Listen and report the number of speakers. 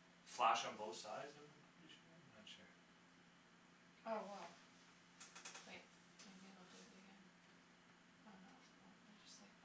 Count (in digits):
2